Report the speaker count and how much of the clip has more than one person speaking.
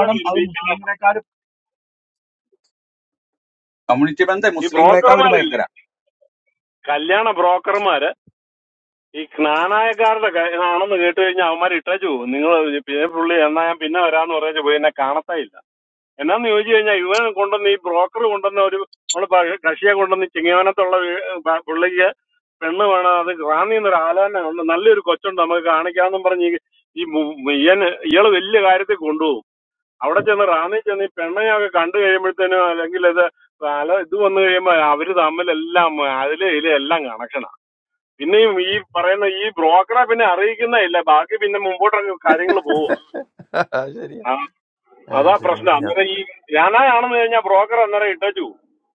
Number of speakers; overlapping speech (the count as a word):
three, about 5%